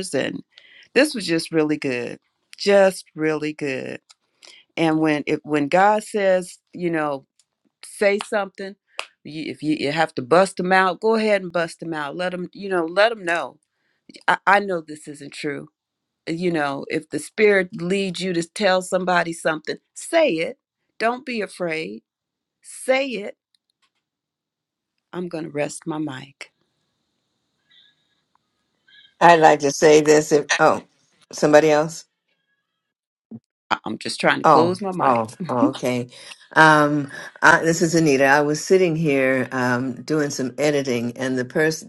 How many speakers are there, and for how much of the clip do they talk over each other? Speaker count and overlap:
2, about 2%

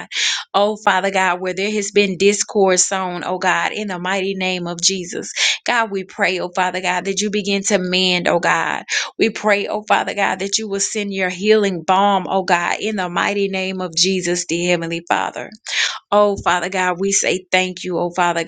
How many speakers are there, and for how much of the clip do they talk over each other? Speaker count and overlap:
1, no overlap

